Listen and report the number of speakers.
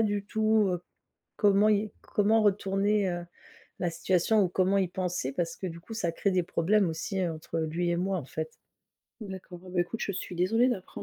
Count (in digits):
2